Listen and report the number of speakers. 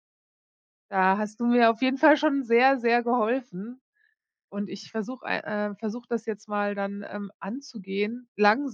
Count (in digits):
1